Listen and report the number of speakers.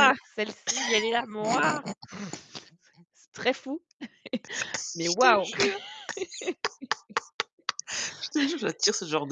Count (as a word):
two